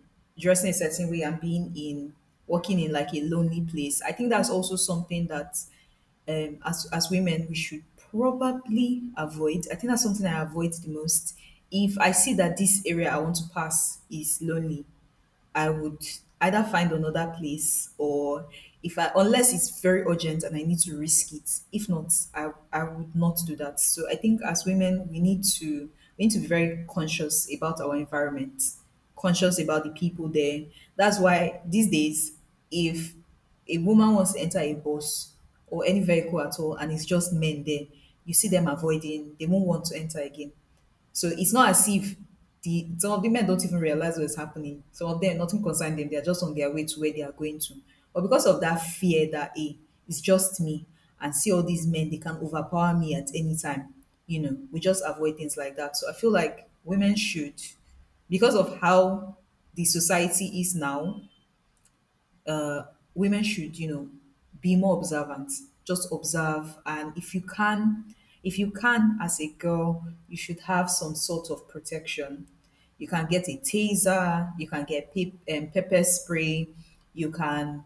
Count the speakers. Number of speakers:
one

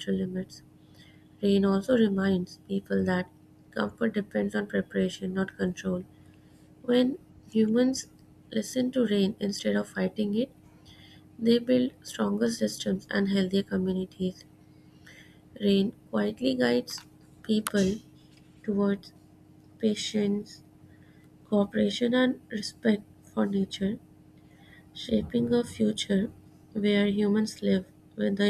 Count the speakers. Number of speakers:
one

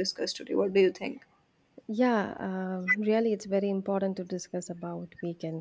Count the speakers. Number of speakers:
two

